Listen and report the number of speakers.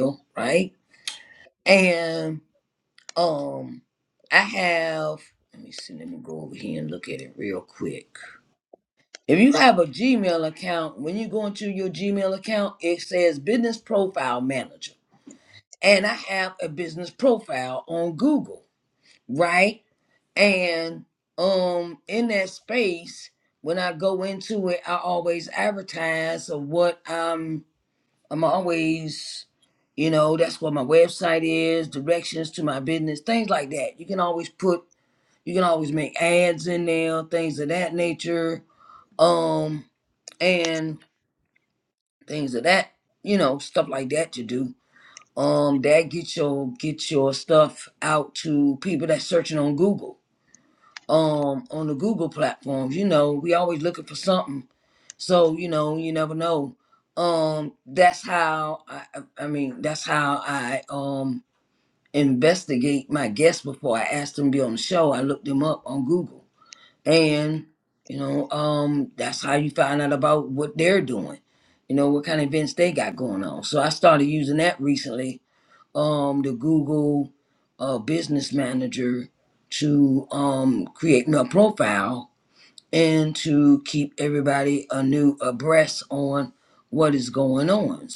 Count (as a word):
one